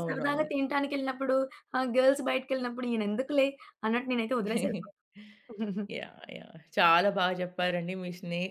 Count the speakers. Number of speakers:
two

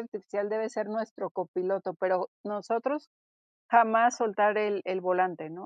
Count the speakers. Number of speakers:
one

